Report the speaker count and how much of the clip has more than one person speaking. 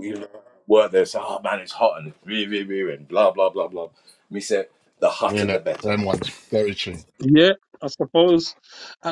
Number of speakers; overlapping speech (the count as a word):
three, about 7%